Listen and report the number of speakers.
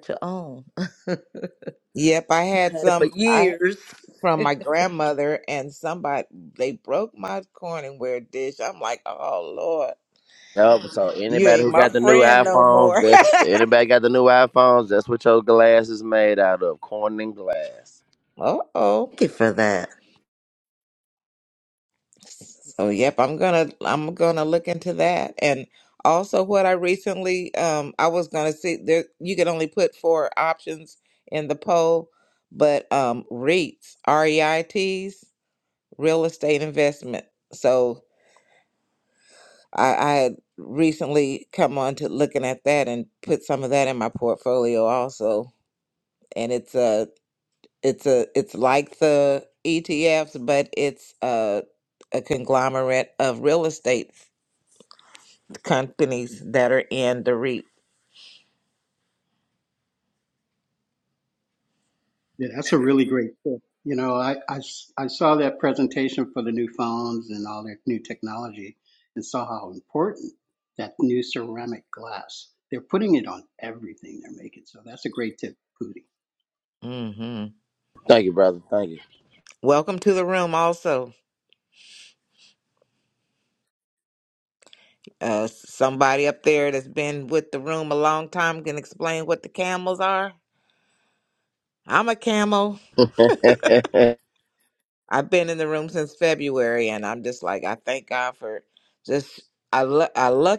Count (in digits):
4